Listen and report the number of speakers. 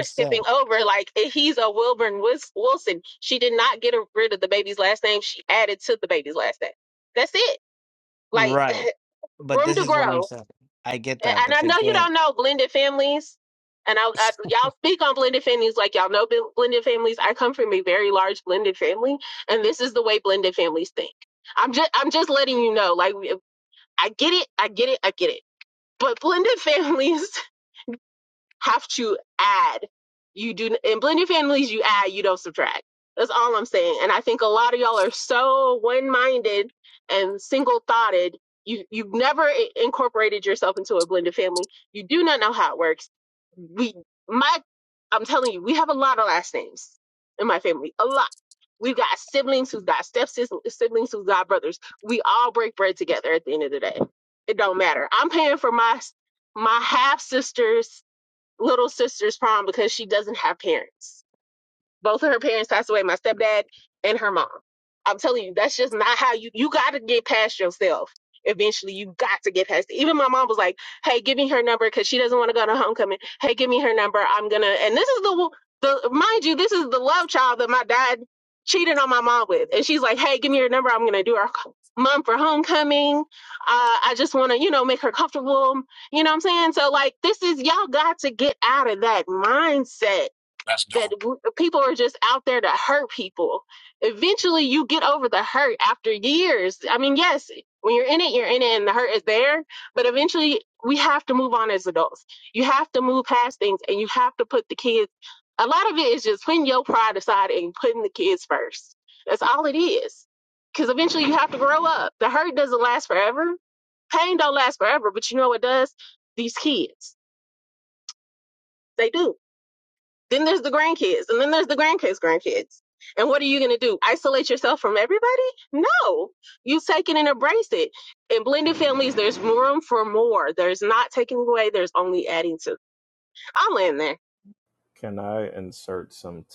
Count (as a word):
three